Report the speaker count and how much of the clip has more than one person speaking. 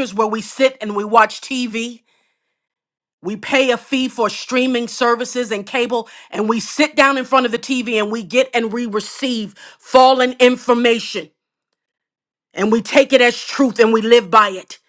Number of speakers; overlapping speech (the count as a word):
one, no overlap